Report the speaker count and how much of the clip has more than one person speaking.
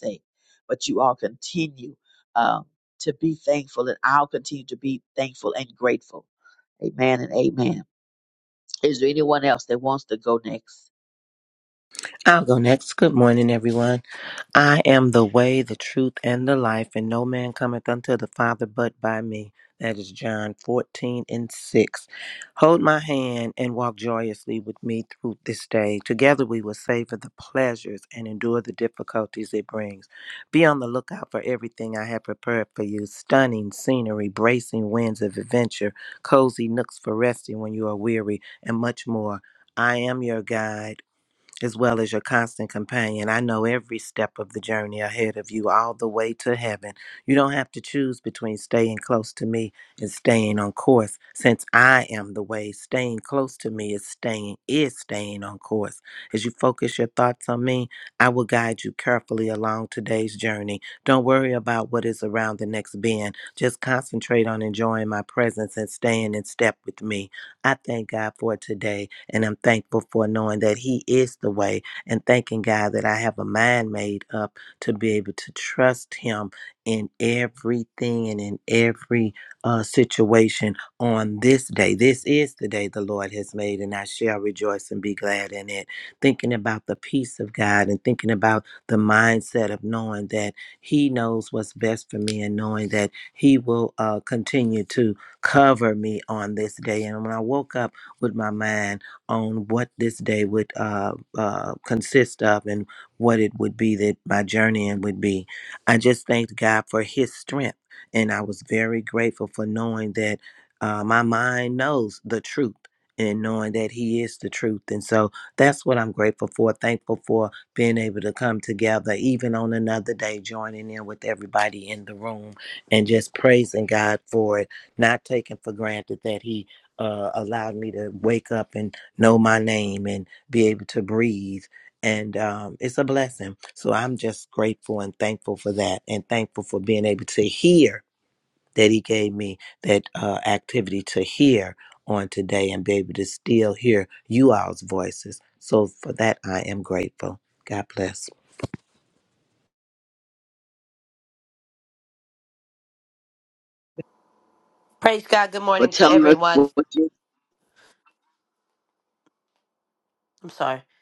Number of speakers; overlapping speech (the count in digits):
3, about 1%